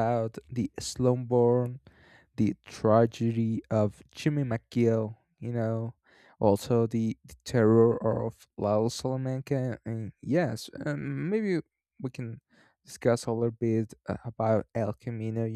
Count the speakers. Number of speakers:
1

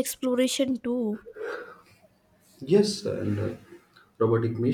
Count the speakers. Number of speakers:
2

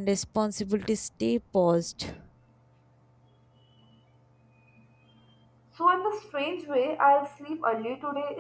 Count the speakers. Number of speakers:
2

